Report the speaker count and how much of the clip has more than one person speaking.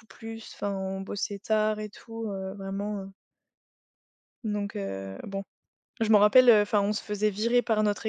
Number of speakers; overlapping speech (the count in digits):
1, no overlap